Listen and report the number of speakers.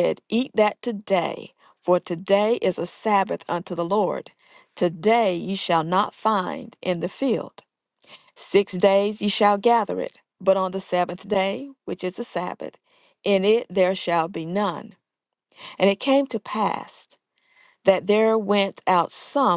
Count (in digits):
1